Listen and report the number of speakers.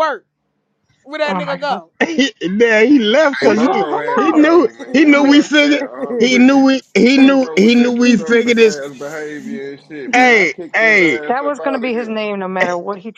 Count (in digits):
4